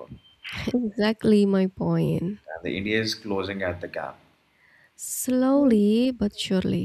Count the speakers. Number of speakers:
2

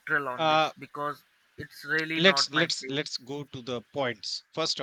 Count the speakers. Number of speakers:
2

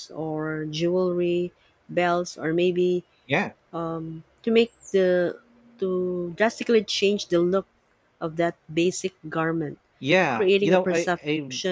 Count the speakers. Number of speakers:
2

